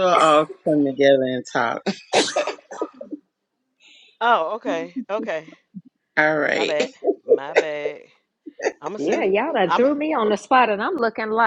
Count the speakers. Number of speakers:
3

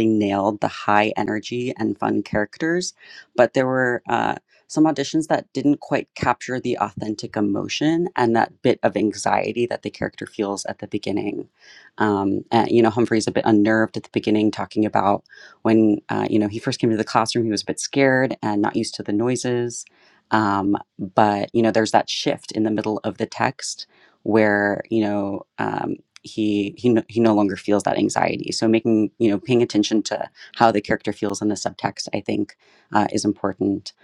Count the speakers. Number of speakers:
1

